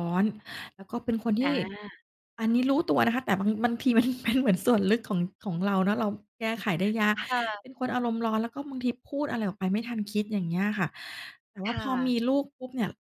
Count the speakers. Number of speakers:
2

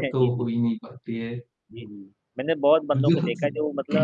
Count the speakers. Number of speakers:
2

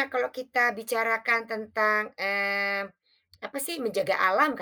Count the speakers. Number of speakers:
1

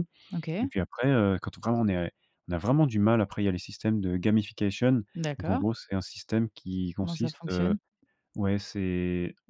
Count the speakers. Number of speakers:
2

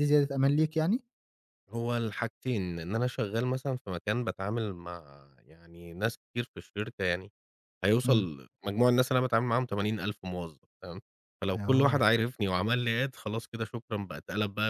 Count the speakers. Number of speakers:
2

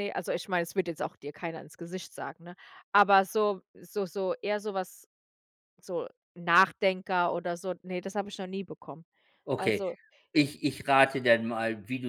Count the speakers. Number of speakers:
2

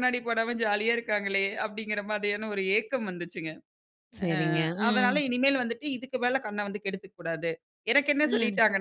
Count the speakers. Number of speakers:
2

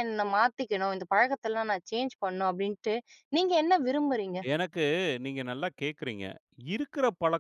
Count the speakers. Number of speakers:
2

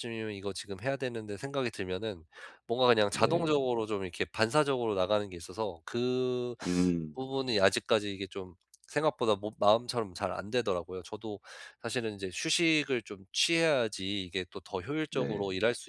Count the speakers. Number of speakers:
2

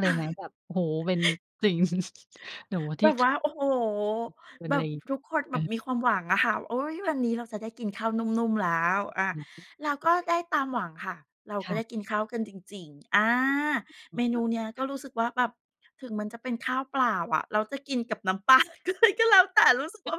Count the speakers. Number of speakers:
2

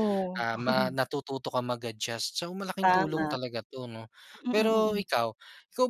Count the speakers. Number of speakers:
2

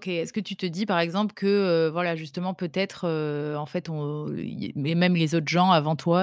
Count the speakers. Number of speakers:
1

